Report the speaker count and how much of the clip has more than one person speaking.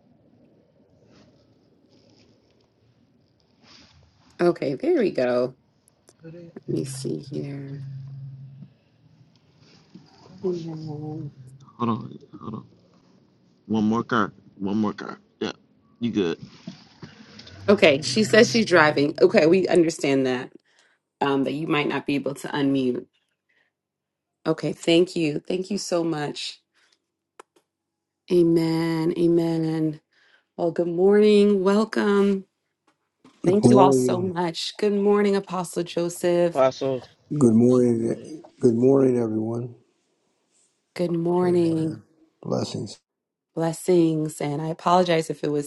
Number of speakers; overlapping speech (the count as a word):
three, about 3%